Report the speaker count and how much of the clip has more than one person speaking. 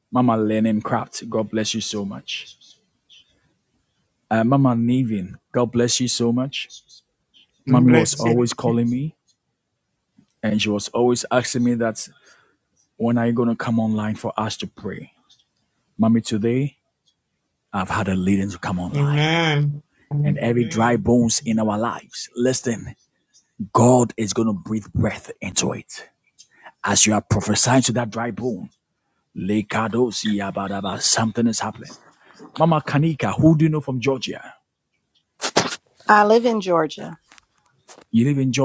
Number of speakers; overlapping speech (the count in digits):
3, about 3%